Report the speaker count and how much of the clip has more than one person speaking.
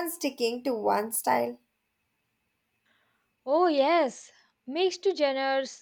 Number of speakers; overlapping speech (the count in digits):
2, no overlap